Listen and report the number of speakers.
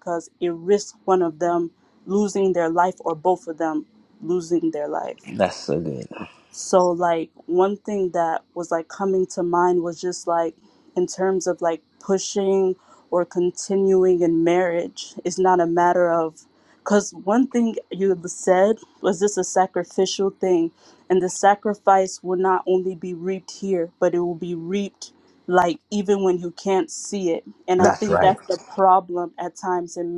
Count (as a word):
two